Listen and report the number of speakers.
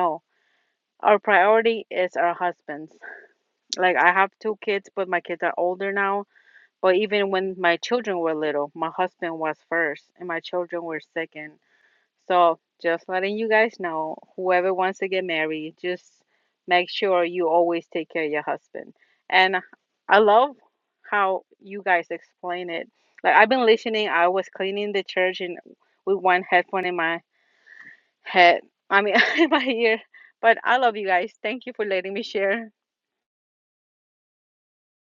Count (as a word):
one